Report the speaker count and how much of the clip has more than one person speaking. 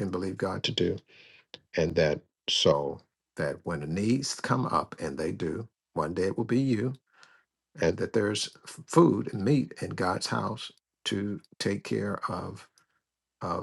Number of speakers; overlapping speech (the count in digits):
1, no overlap